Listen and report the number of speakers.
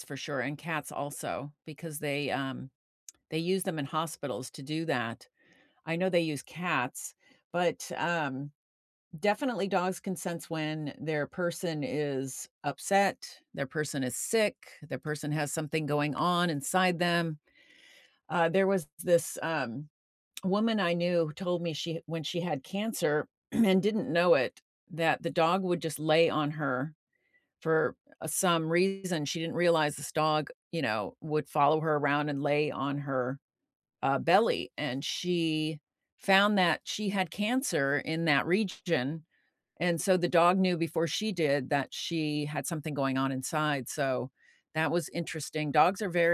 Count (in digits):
1